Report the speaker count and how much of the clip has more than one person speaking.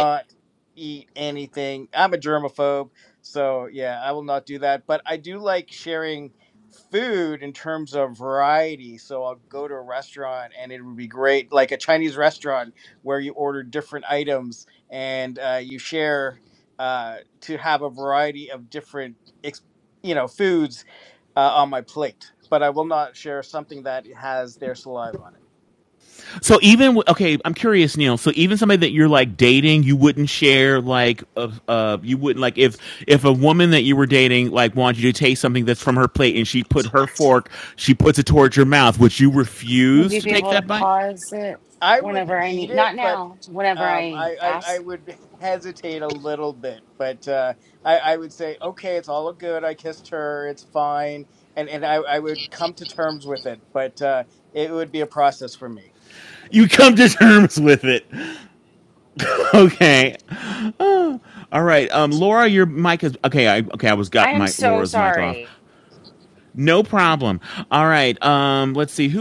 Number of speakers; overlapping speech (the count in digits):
3, about 6%